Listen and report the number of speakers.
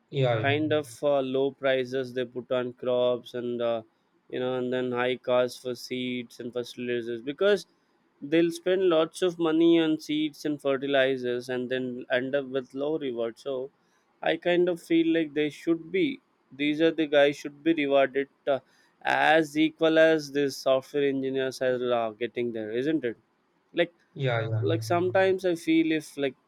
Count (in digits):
2